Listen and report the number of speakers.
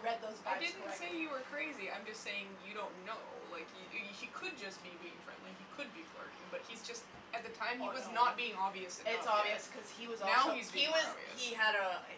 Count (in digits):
2